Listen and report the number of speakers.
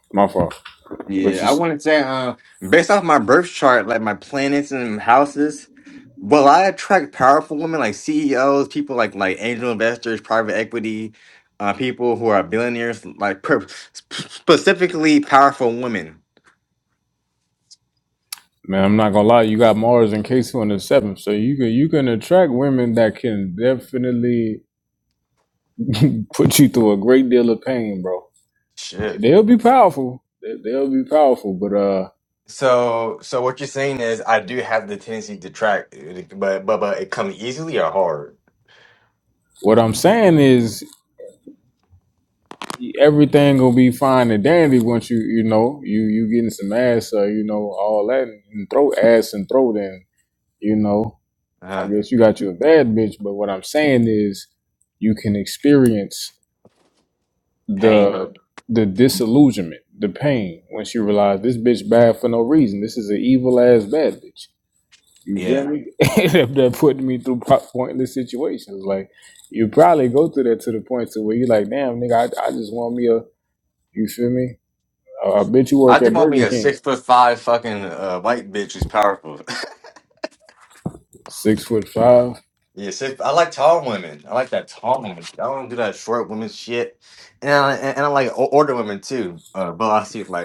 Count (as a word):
two